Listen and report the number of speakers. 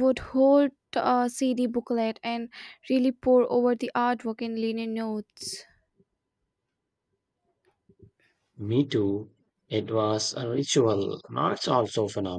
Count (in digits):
2